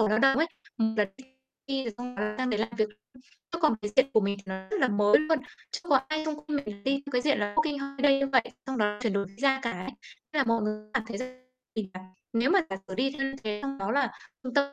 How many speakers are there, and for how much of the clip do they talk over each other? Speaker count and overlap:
one, no overlap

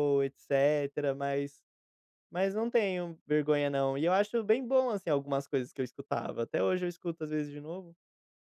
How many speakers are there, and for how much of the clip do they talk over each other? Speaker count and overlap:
one, no overlap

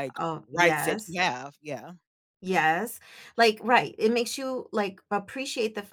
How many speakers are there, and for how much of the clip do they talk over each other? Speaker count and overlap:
two, about 9%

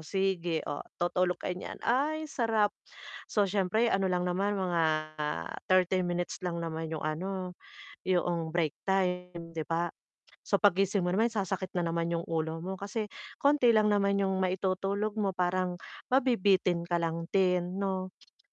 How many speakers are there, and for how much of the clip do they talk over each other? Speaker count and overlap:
one, no overlap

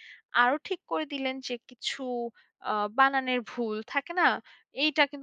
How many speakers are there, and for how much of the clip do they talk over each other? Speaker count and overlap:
one, no overlap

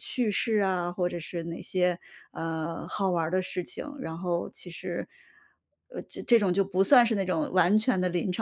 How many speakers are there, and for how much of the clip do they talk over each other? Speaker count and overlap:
one, no overlap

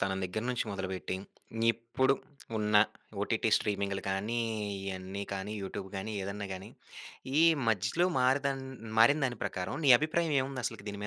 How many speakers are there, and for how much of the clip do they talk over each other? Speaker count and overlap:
one, no overlap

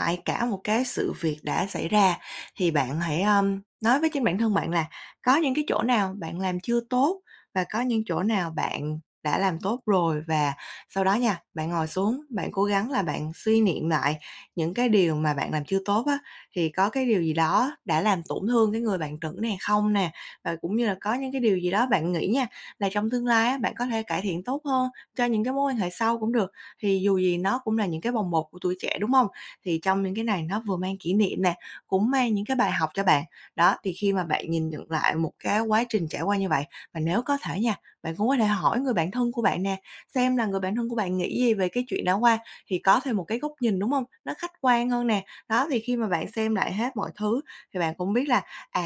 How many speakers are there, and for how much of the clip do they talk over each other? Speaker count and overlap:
one, no overlap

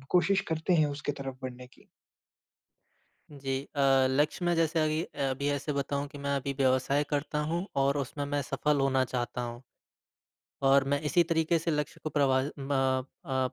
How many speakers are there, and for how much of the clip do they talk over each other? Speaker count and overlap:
two, no overlap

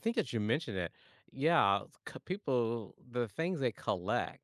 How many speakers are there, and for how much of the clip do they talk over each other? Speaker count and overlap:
one, no overlap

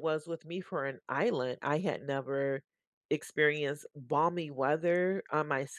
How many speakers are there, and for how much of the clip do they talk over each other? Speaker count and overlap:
one, no overlap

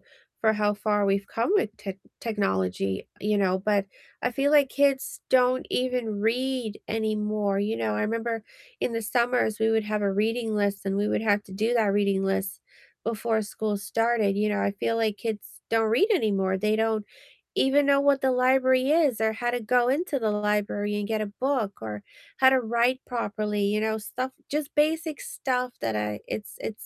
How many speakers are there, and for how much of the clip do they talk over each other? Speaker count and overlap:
one, no overlap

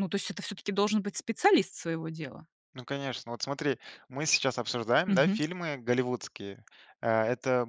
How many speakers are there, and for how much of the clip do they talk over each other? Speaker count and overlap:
two, about 4%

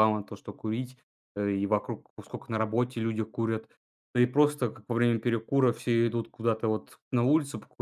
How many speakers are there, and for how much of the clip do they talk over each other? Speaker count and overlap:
one, no overlap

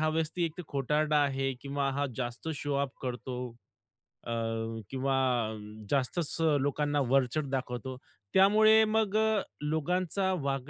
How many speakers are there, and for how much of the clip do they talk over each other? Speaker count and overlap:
one, no overlap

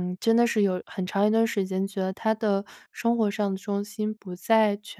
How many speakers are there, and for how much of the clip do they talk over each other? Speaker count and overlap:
one, no overlap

